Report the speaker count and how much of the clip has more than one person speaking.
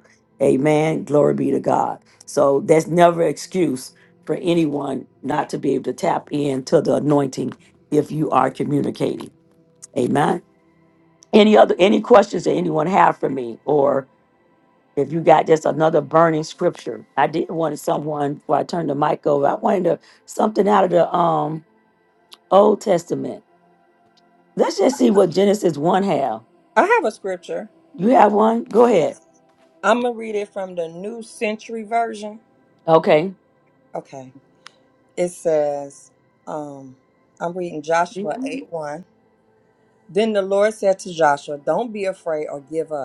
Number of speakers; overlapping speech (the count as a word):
two, under 1%